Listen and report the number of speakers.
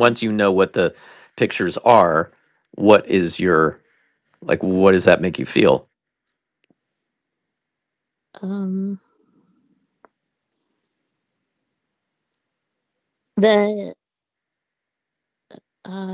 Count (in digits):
2